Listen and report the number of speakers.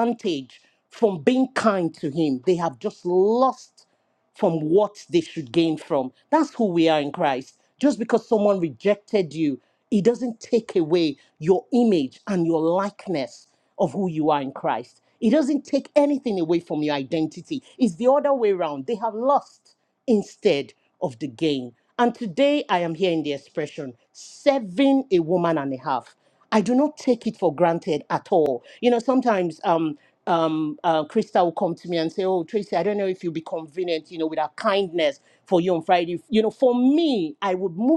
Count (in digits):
1